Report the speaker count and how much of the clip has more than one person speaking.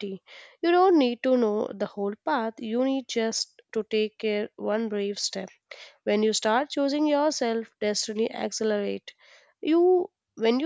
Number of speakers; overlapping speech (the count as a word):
one, no overlap